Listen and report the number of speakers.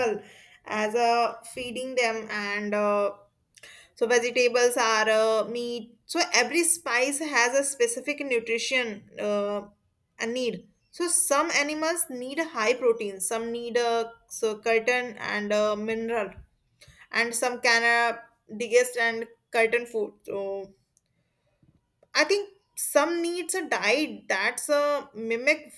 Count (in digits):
1